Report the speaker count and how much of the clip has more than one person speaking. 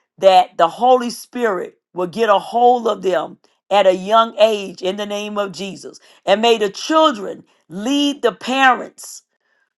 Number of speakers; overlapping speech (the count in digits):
1, no overlap